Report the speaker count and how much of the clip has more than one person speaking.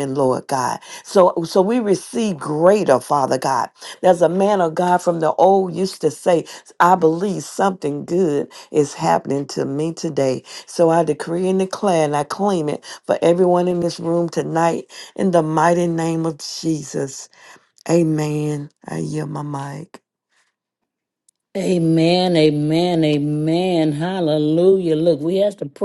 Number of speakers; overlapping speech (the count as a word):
two, no overlap